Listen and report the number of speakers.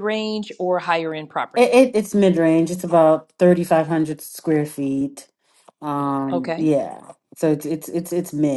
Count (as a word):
two